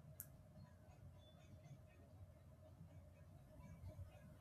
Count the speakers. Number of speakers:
zero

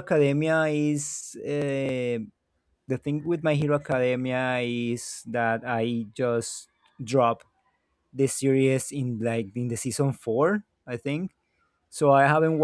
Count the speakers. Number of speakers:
one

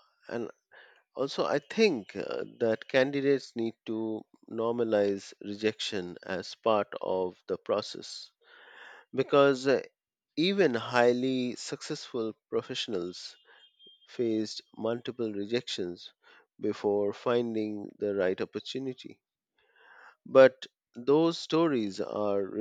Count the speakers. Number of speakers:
one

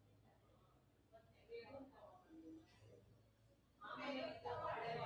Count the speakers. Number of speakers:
zero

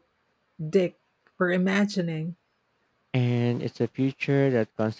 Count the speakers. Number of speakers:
two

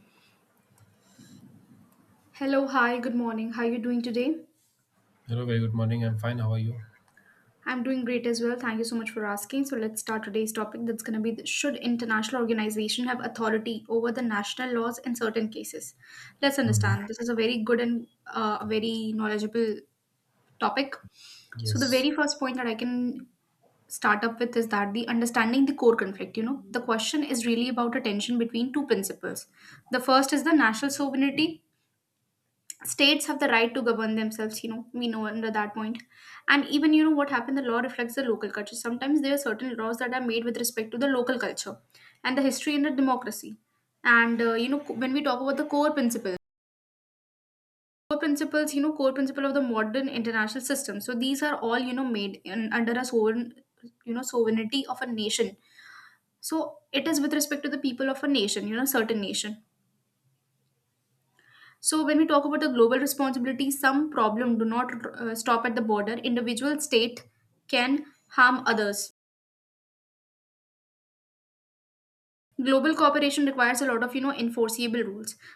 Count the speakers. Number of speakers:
two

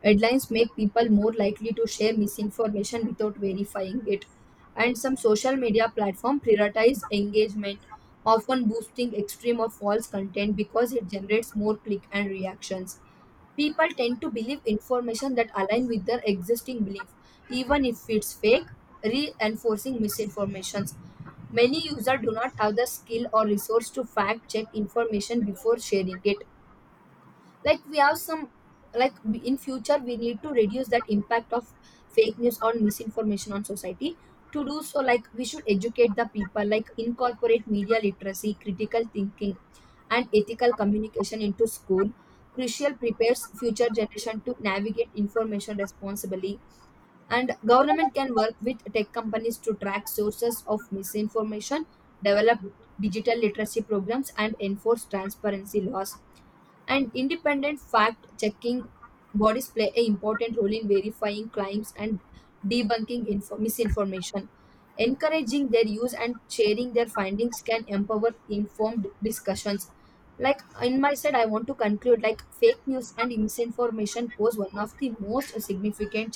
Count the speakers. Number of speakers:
one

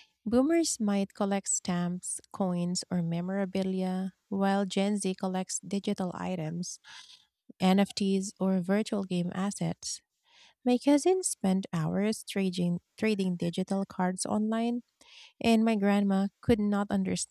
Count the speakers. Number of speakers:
one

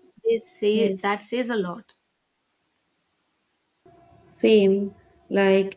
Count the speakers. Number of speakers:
two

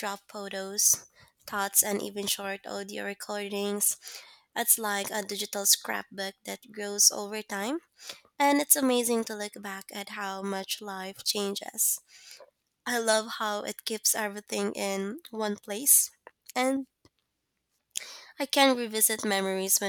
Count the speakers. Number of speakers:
one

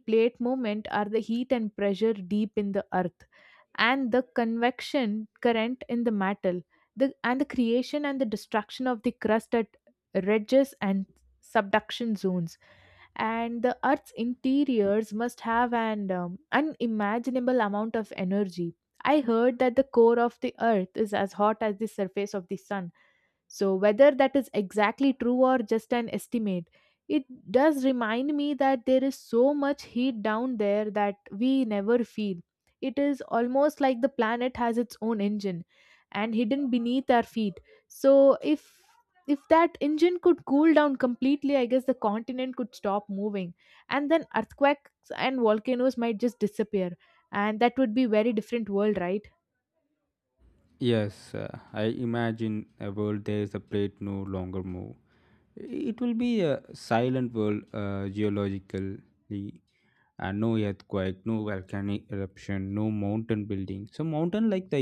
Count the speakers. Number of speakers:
two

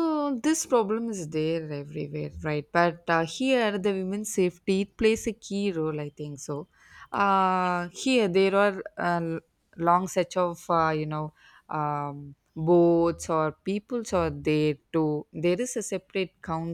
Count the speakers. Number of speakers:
one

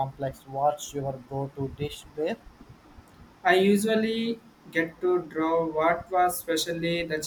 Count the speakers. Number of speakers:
two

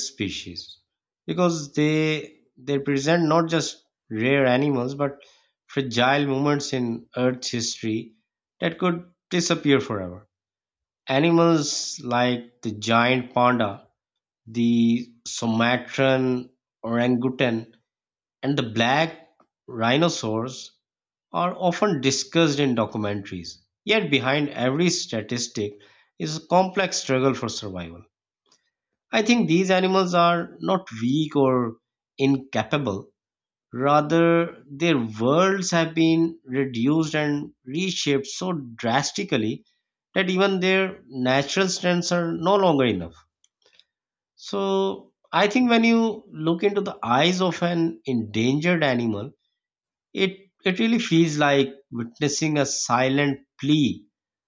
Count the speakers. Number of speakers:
one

